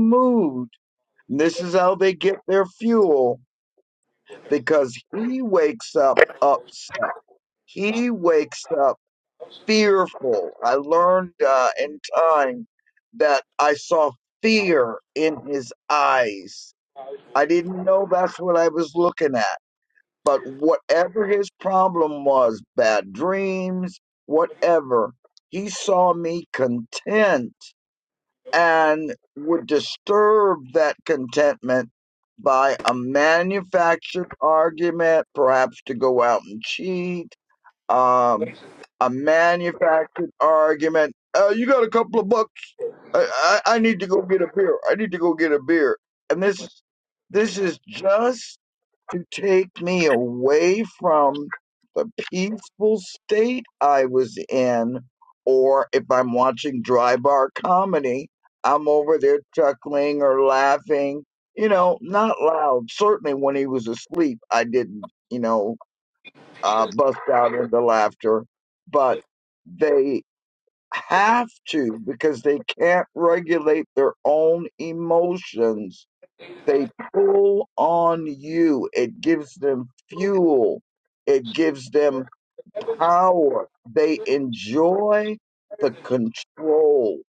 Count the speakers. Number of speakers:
1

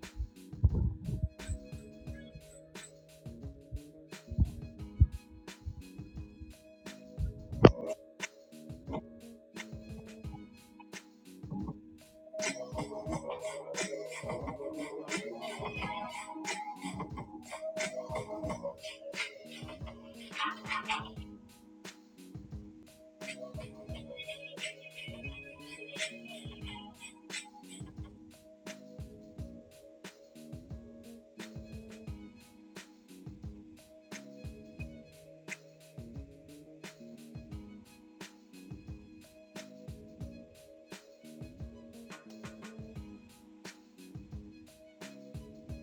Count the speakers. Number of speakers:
0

